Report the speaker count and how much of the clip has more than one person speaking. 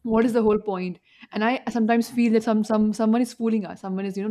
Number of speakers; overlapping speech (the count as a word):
one, no overlap